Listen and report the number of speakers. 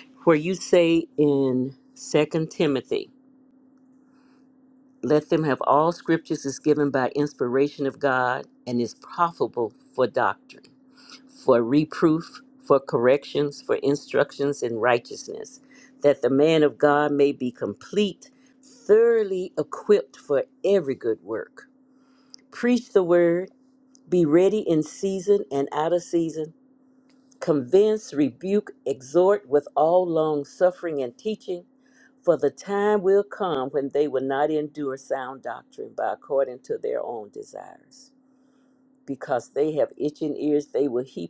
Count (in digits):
1